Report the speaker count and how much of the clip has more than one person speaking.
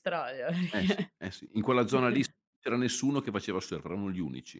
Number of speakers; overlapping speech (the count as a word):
two, about 7%